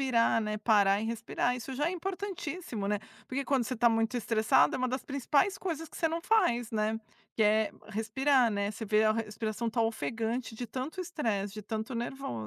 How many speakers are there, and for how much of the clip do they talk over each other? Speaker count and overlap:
1, no overlap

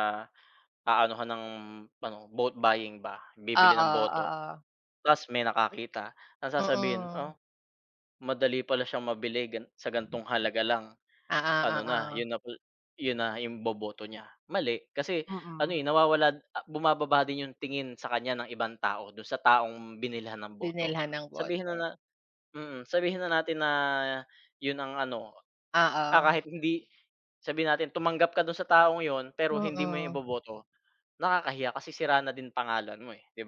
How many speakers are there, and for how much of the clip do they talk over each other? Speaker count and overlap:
2, about 12%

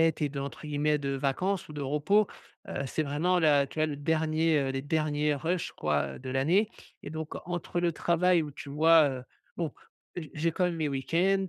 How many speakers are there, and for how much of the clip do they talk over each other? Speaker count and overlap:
1, no overlap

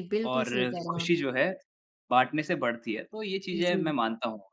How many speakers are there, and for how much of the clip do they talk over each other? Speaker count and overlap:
2, about 19%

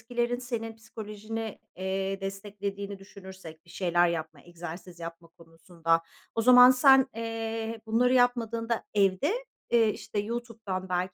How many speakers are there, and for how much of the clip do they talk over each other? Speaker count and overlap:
1, no overlap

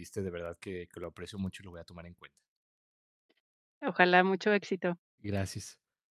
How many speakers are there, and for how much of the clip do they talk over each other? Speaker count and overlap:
2, no overlap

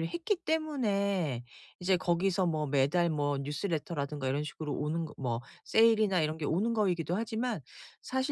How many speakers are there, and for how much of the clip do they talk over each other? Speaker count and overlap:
1, no overlap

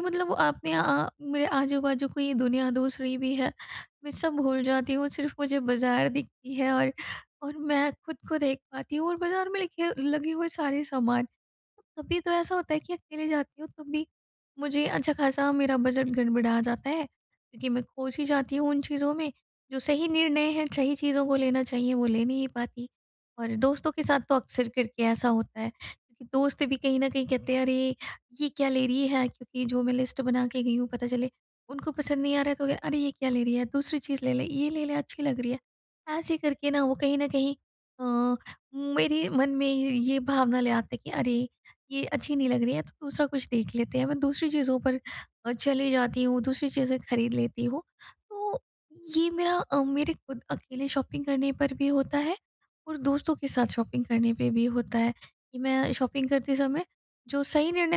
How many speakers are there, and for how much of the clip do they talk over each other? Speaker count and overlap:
1, no overlap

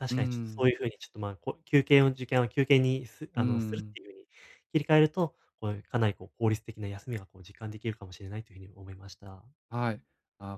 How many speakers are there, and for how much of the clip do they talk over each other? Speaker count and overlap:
2, about 9%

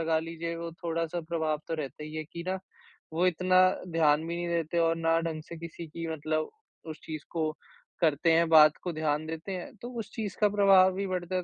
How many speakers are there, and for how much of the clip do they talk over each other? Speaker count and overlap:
1, no overlap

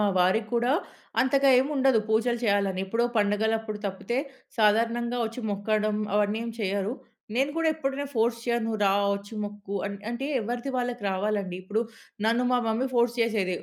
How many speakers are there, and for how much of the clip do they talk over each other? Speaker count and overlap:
1, no overlap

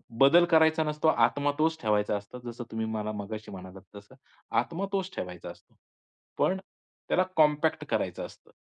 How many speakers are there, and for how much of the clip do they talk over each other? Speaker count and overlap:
1, no overlap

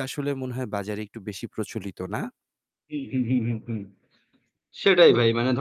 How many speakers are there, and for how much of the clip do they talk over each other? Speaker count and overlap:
2, about 3%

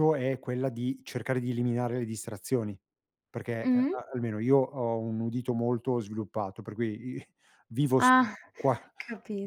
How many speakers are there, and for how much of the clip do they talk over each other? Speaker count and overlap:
2, about 5%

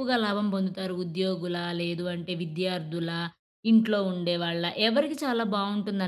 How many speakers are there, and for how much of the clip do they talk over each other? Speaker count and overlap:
1, no overlap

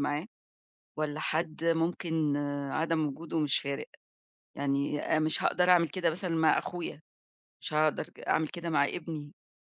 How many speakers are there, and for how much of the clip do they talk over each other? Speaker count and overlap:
1, no overlap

